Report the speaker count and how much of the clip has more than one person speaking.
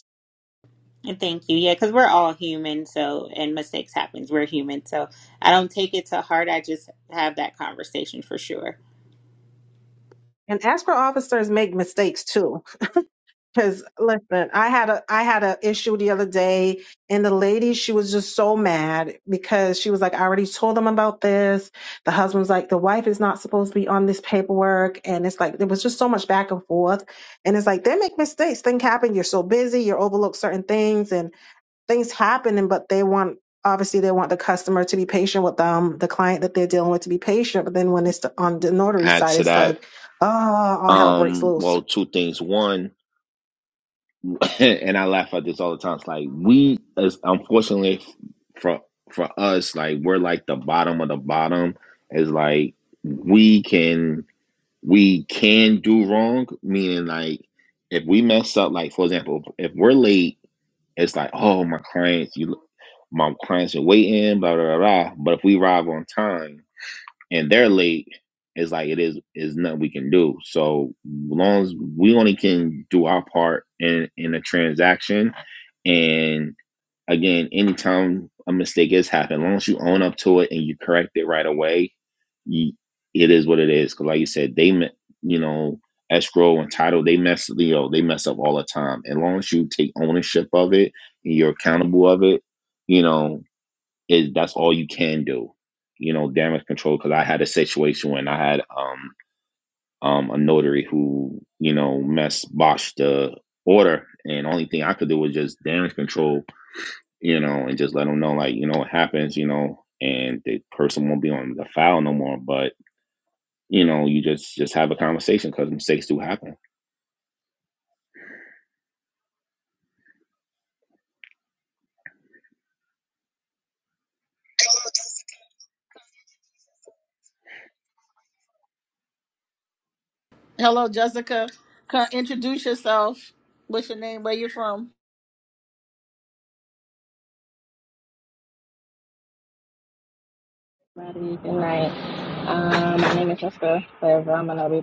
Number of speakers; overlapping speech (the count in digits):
5, about 1%